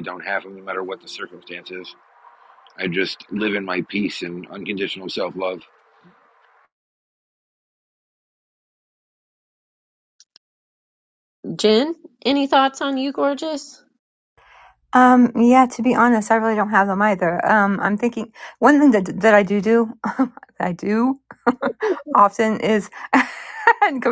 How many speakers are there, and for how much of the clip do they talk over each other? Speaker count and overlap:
three, no overlap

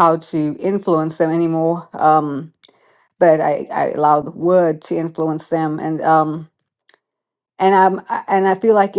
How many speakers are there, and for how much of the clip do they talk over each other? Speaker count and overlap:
one, no overlap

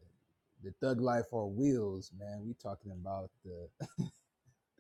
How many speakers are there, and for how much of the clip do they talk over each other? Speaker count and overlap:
one, no overlap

